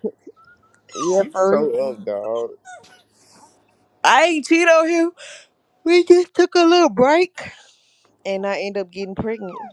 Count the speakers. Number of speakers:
2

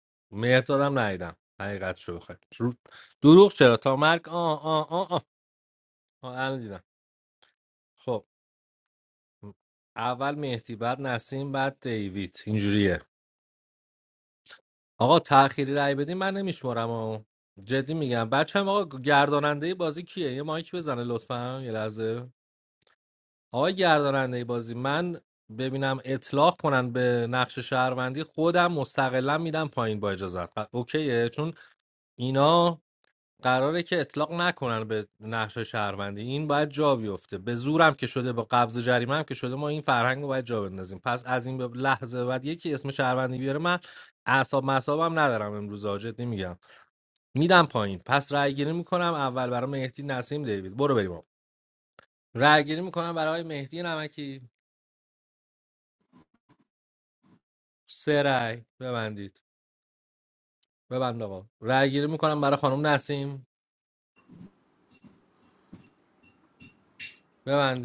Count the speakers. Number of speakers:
1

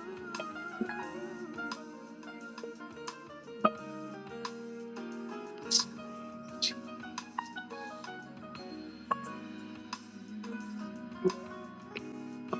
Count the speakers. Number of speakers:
0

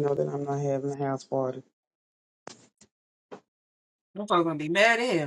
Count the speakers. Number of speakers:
2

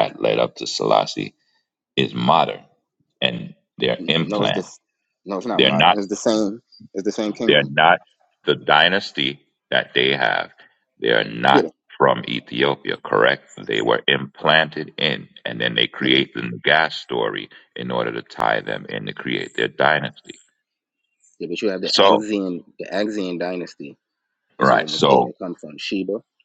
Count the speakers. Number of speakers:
2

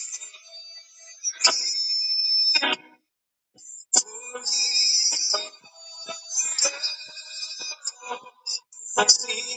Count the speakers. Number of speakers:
0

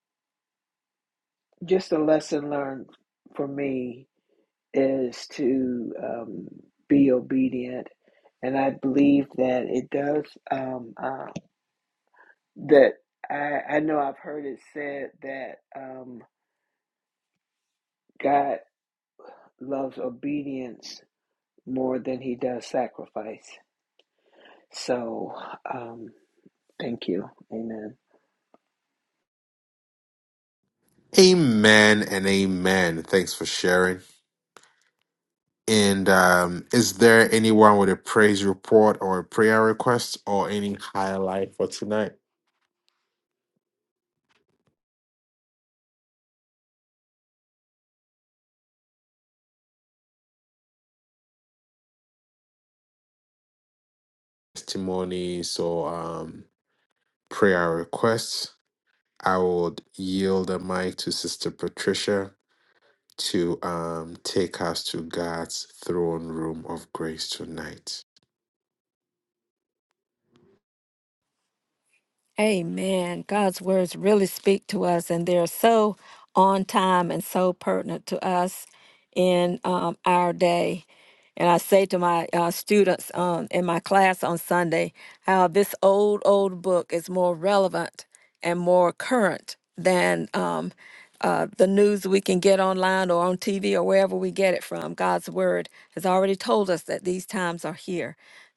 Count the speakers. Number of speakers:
3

